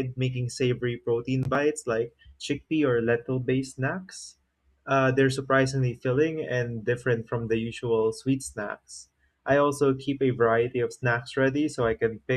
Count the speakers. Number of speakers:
one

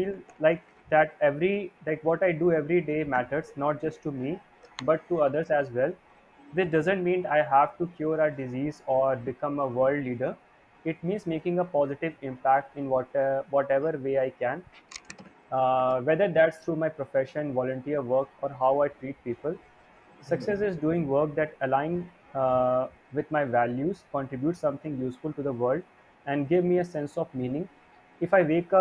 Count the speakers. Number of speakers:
one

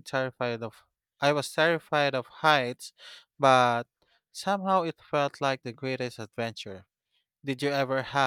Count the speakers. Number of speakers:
one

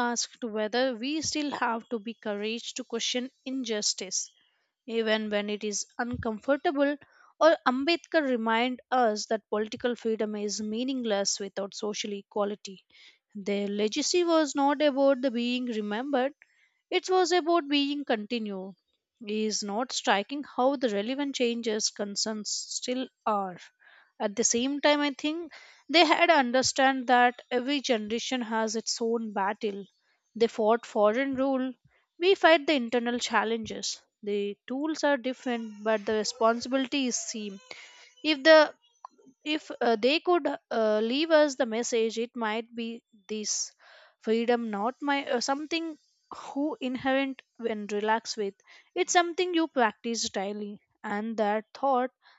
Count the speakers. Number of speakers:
one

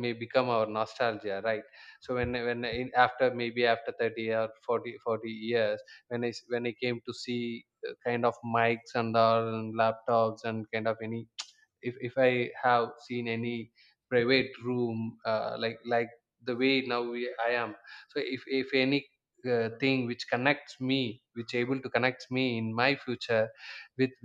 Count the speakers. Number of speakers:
one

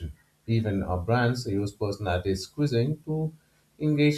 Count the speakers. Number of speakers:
one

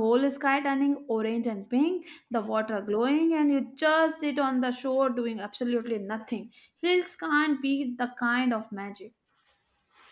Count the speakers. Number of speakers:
one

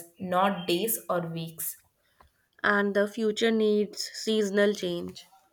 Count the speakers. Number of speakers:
two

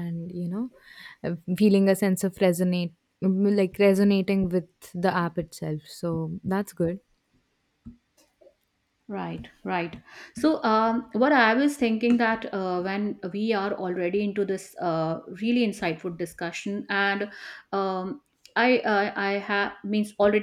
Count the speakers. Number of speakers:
two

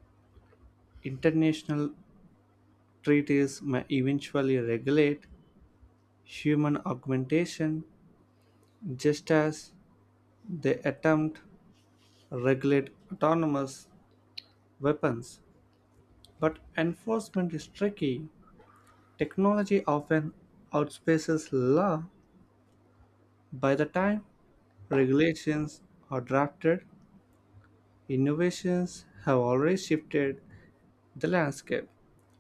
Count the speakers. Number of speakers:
one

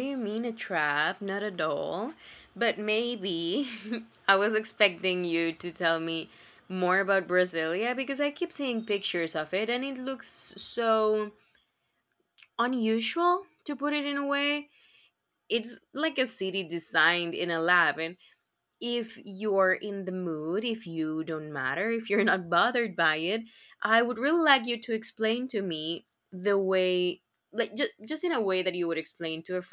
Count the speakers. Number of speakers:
one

